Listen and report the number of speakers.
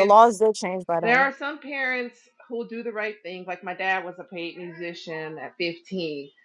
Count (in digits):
2